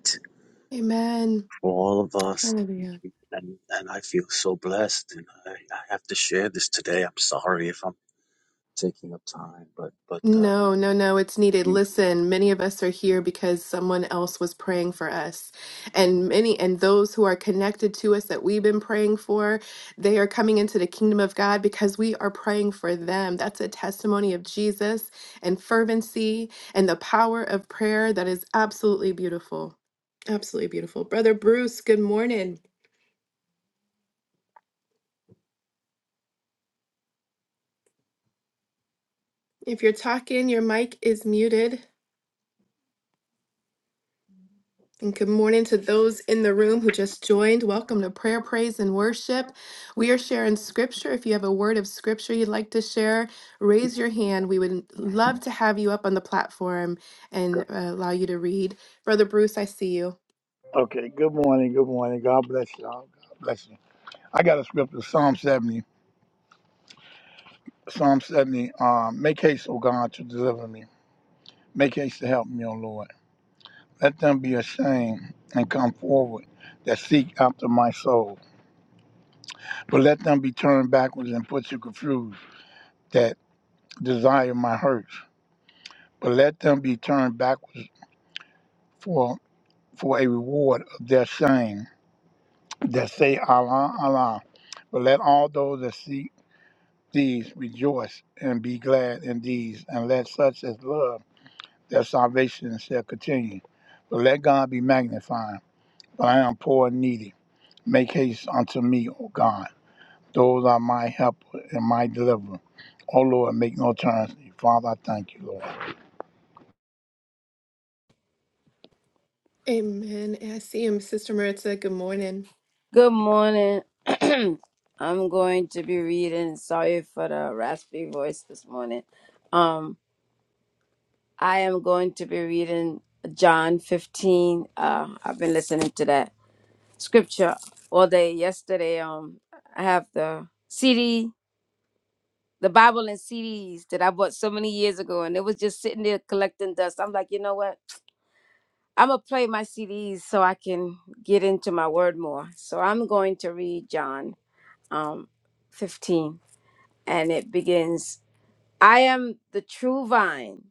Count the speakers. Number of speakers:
4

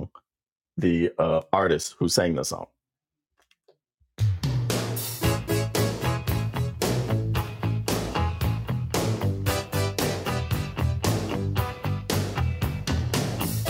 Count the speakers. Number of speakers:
1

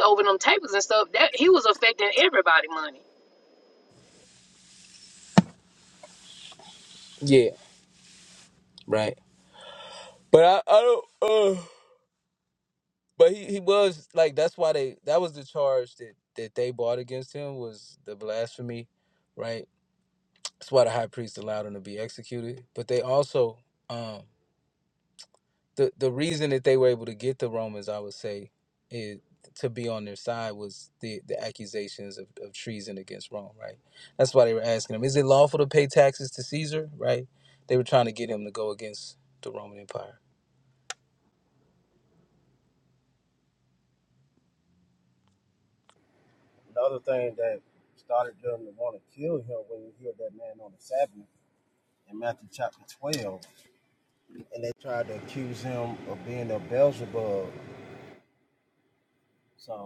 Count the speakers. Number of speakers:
3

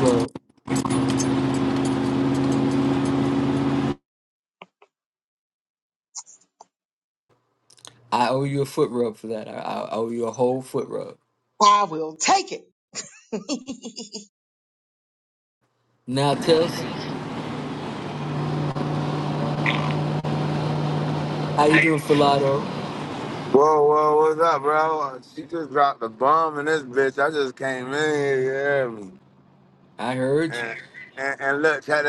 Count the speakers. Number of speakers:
3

